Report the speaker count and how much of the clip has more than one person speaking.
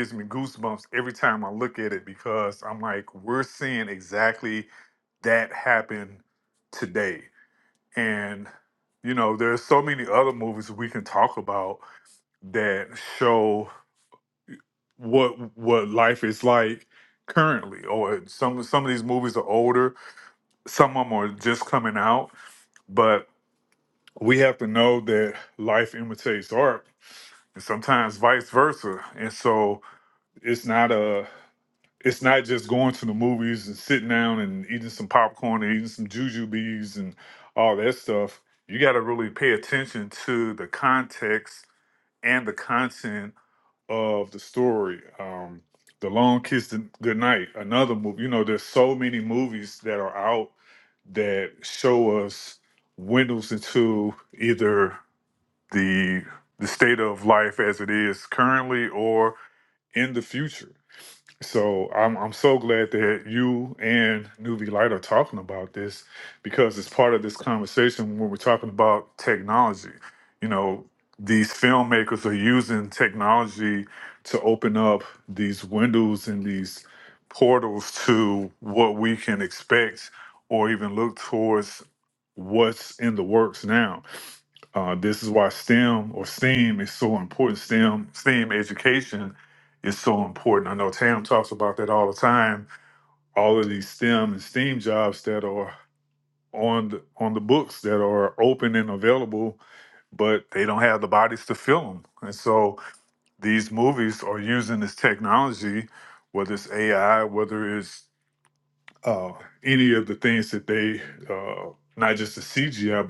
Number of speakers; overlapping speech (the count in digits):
1, no overlap